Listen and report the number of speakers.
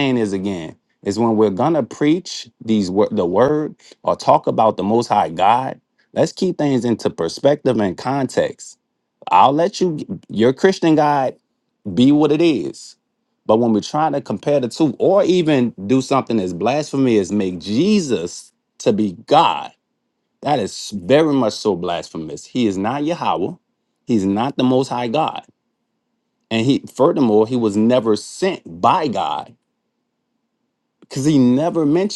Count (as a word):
one